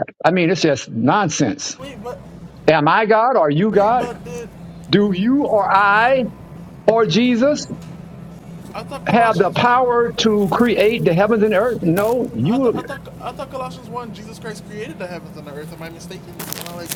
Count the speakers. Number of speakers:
2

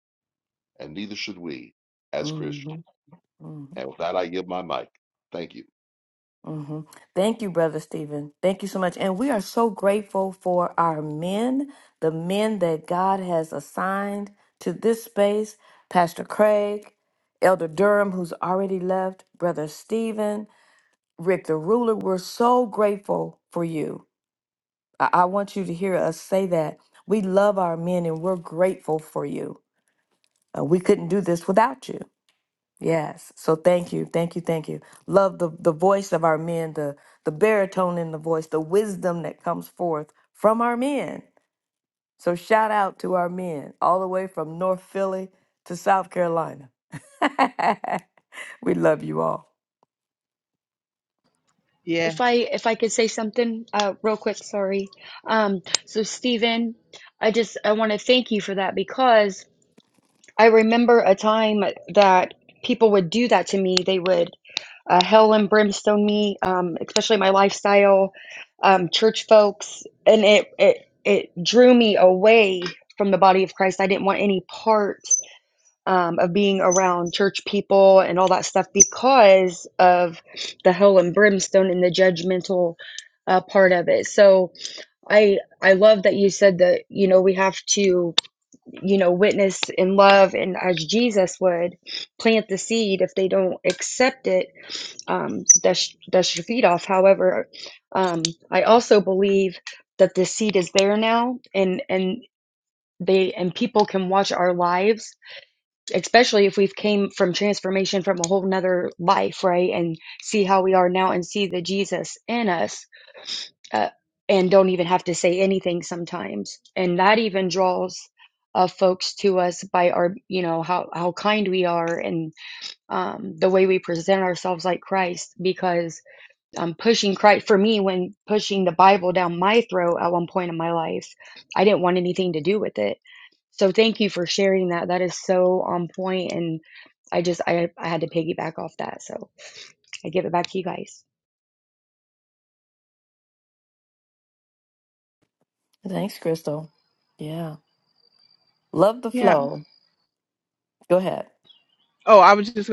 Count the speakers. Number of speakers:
4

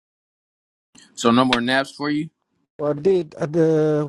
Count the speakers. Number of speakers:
2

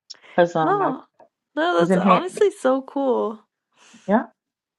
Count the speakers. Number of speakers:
2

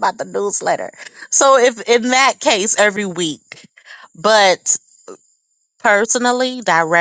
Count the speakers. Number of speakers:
1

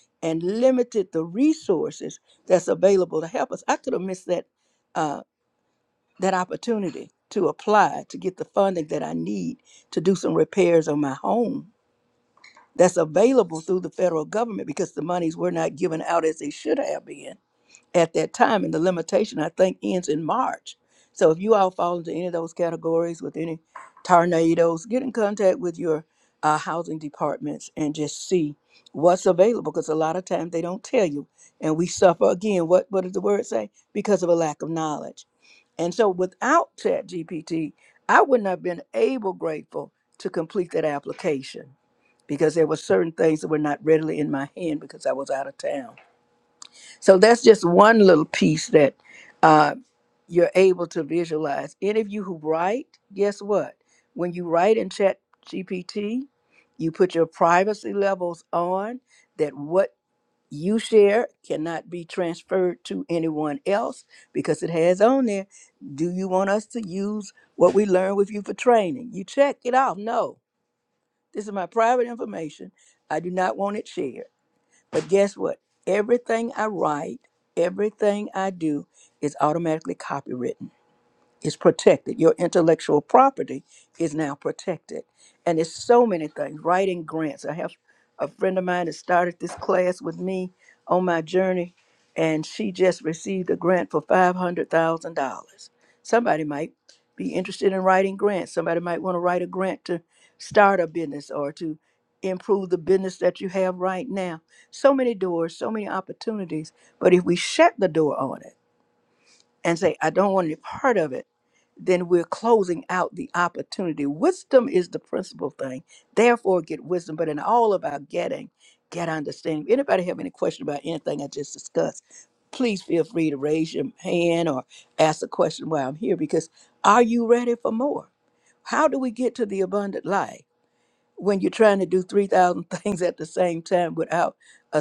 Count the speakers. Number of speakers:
1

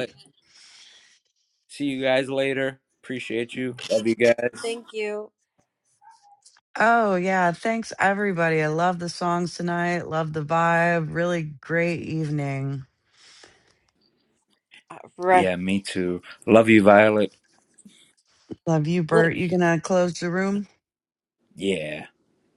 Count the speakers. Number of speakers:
3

